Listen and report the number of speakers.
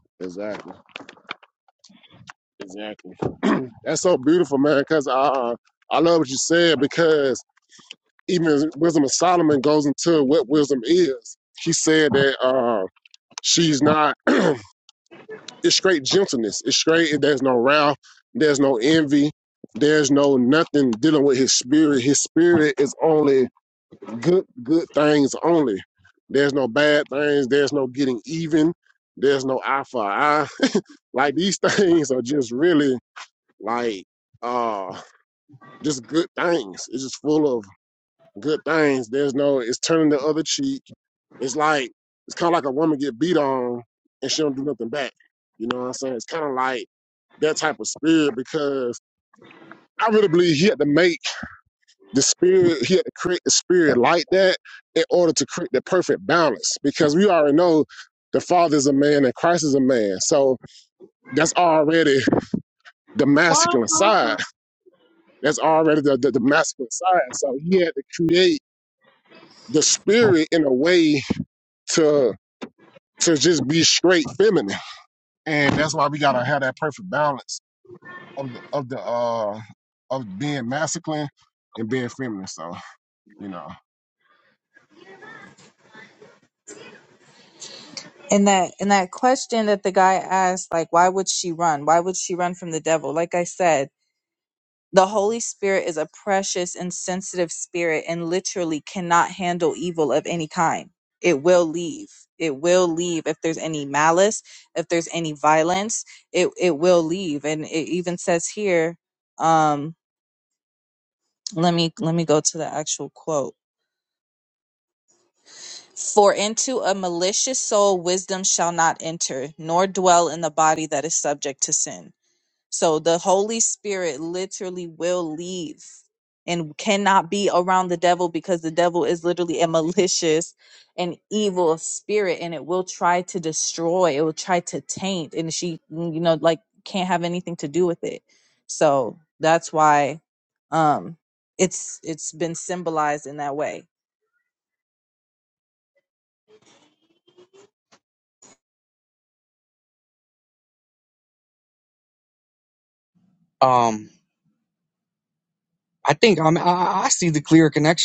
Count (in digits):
3